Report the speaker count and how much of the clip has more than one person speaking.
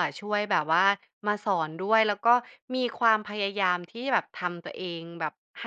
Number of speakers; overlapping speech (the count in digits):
1, no overlap